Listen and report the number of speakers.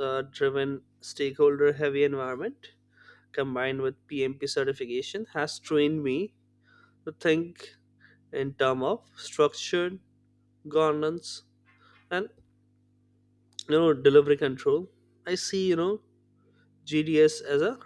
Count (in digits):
1